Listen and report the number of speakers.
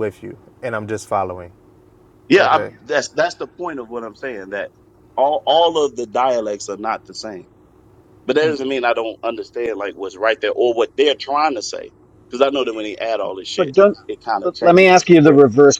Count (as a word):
three